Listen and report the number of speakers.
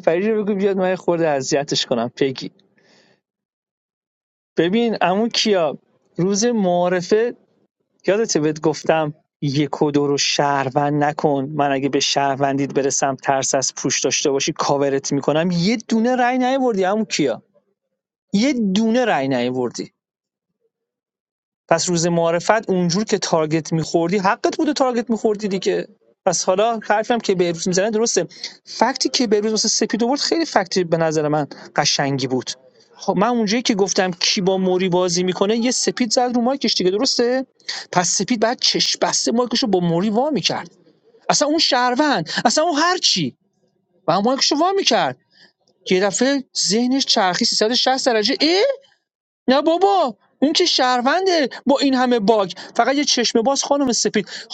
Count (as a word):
one